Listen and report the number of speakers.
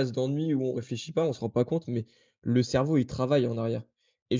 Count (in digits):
1